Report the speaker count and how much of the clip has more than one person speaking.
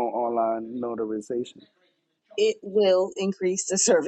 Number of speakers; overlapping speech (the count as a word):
two, no overlap